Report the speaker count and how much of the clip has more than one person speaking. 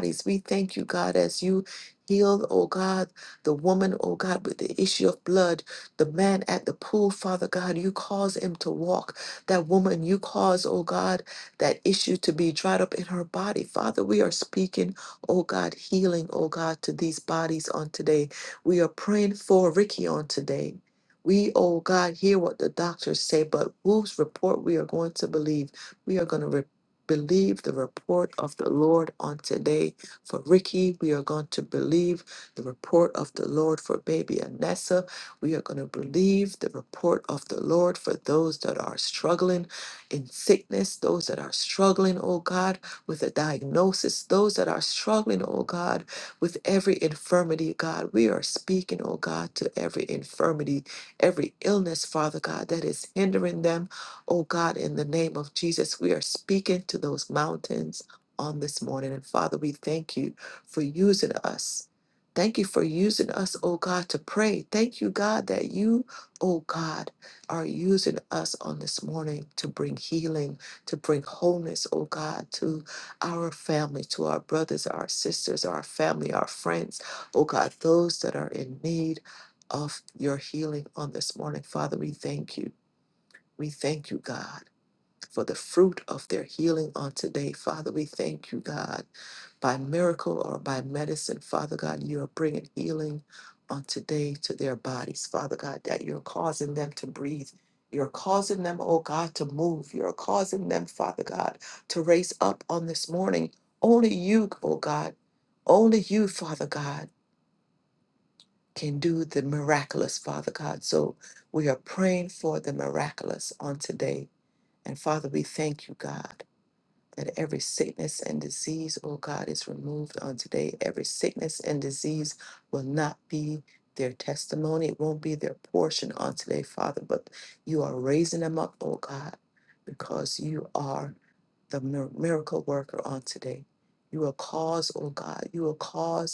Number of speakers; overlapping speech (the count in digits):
1, no overlap